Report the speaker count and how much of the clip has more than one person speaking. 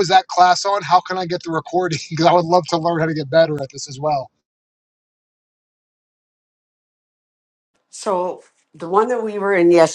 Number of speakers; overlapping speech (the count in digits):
2, no overlap